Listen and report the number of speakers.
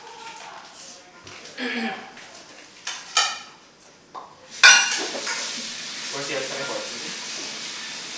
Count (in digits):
1